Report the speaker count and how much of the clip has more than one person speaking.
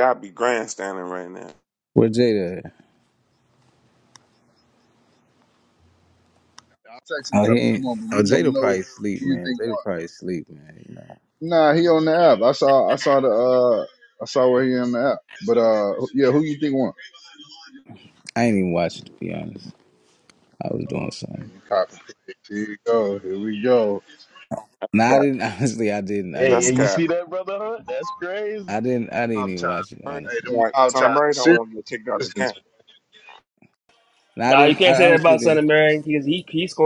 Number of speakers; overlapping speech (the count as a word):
five, about 17%